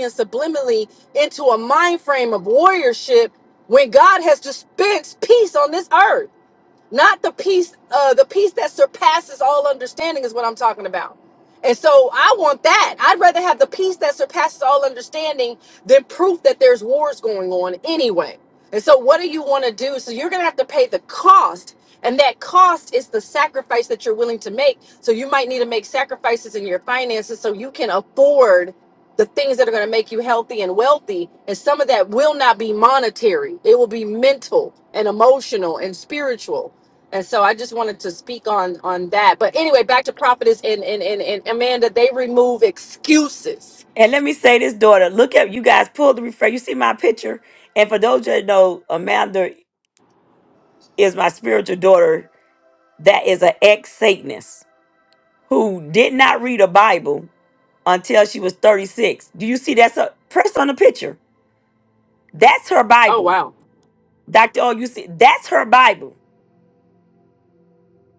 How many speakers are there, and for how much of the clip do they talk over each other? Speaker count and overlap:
two, under 1%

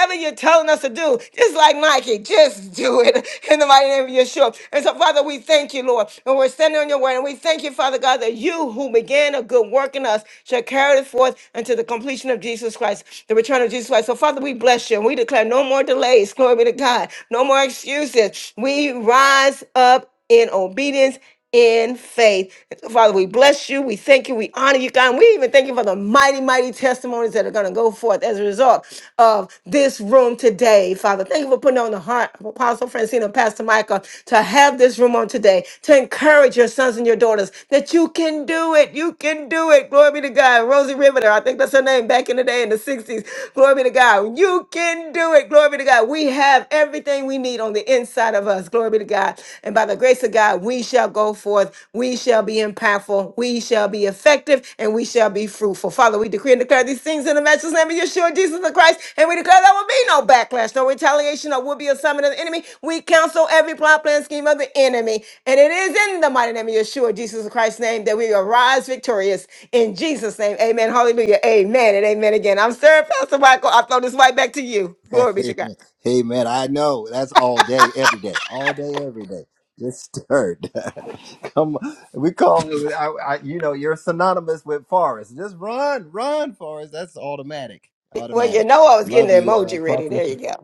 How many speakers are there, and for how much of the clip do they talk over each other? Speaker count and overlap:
two, about 2%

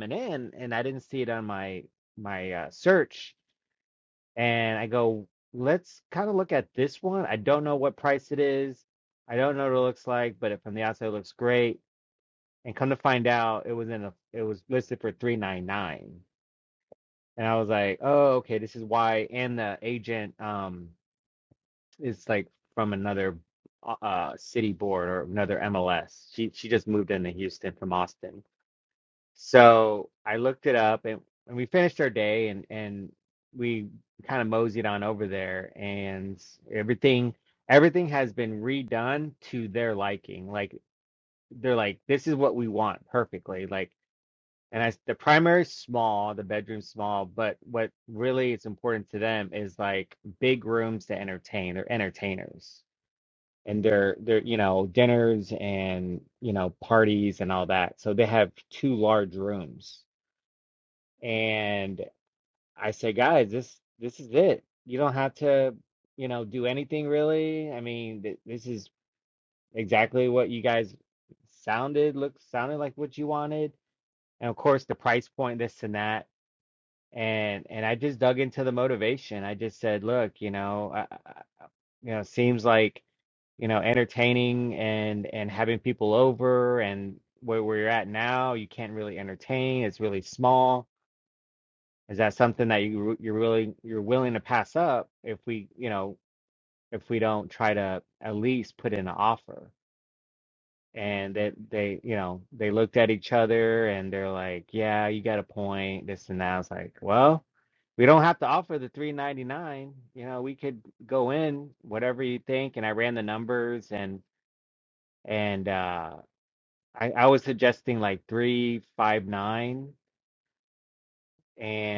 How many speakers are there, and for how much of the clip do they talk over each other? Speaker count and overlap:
one, no overlap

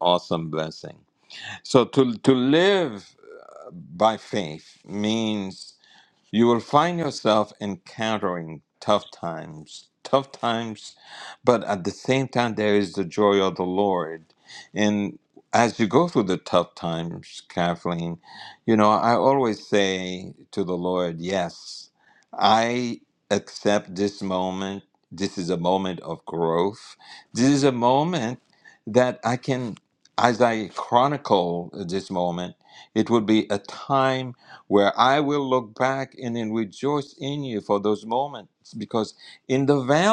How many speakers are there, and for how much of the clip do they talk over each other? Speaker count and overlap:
one, no overlap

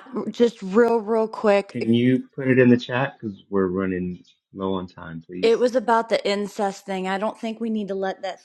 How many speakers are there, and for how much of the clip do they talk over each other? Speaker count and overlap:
two, about 3%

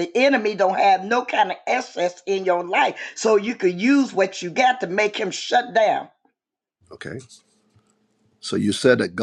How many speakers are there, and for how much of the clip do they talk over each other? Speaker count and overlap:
two, no overlap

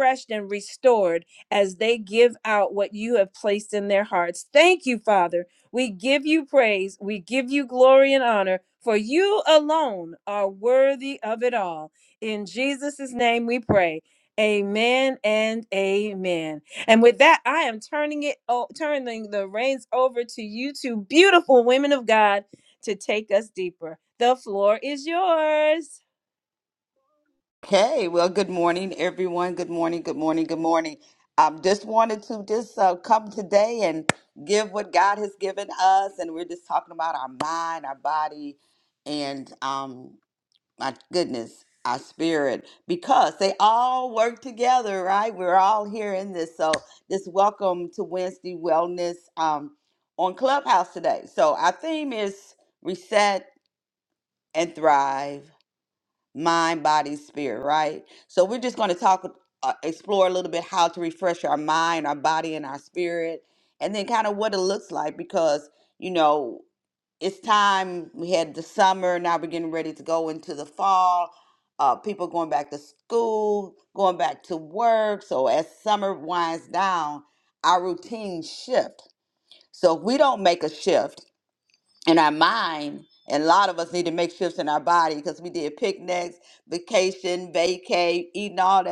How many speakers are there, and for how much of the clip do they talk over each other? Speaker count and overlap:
two, no overlap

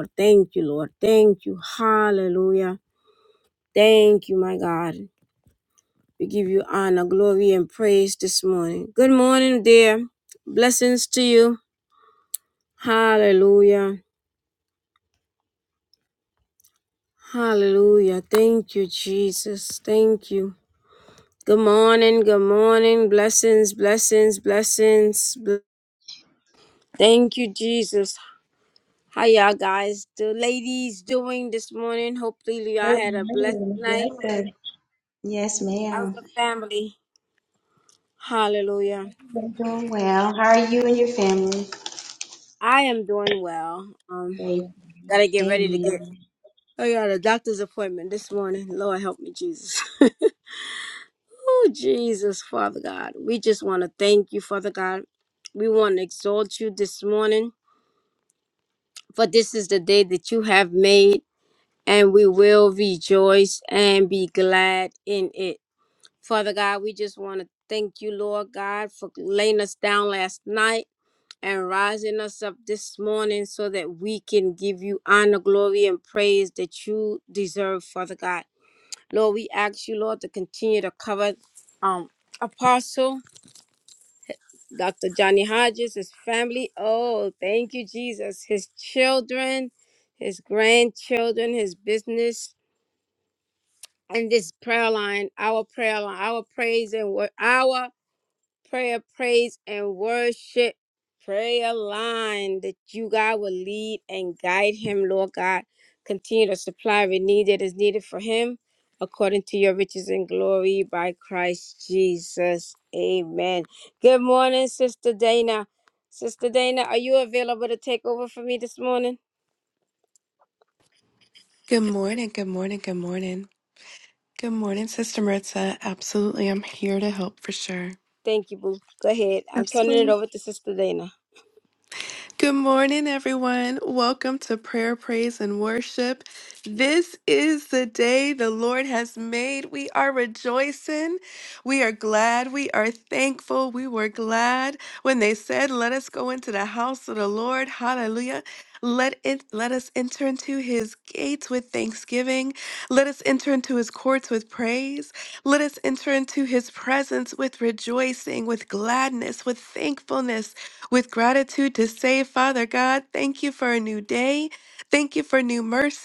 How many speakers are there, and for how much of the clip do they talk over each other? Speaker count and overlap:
three, about 2%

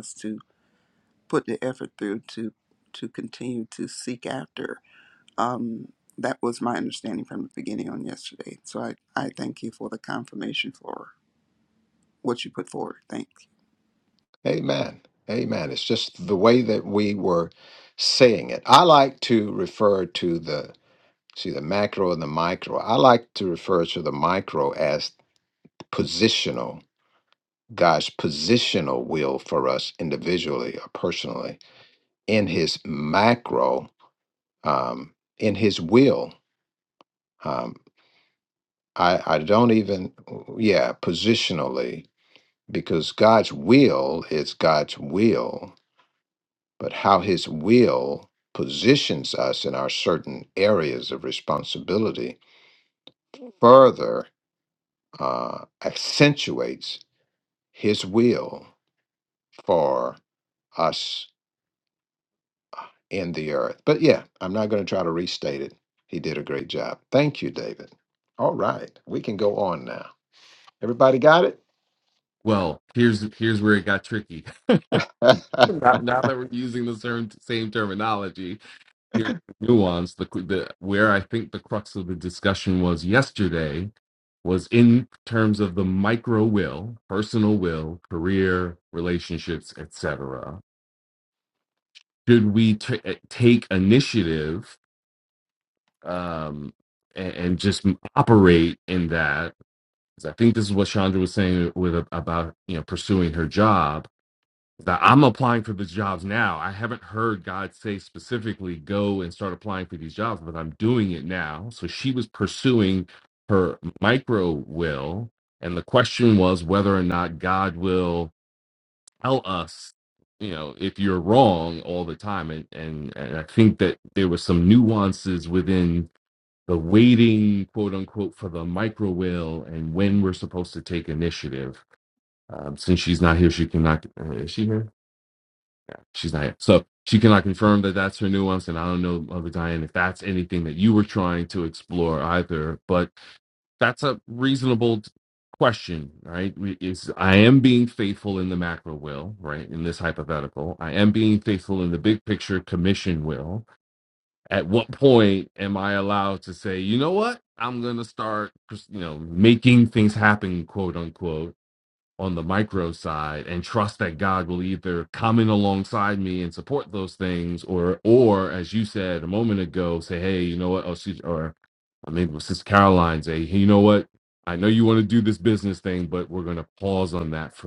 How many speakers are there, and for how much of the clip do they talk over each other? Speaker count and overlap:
three, no overlap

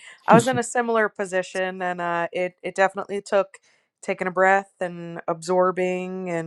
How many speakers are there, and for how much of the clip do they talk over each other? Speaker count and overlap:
one, no overlap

